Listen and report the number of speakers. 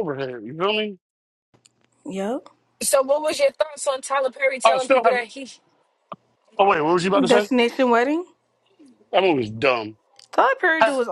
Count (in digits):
3